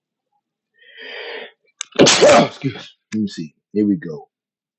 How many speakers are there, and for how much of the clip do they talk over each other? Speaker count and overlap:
one, no overlap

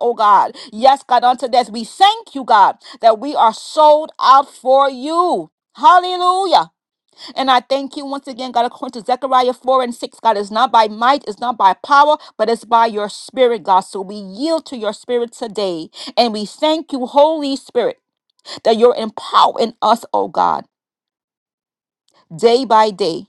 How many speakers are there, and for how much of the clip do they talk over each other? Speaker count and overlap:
one, no overlap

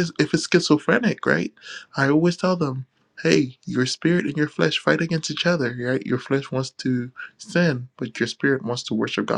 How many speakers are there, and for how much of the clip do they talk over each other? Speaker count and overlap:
one, no overlap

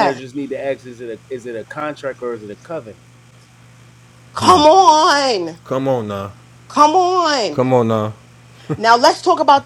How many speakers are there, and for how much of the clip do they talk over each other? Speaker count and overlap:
three, about 2%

